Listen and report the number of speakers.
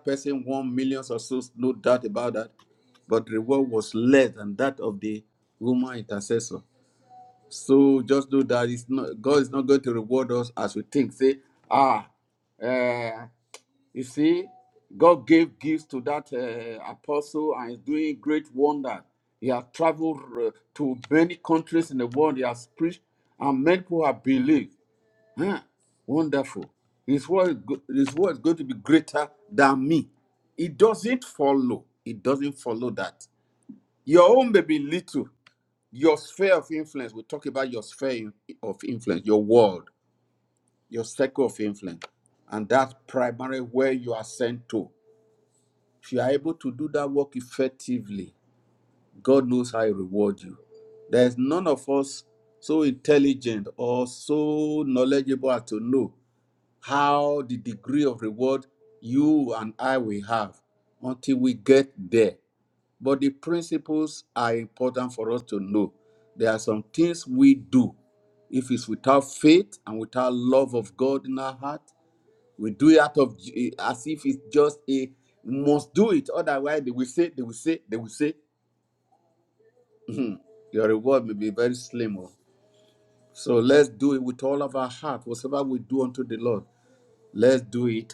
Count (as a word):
one